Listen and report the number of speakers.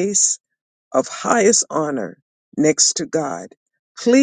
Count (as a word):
one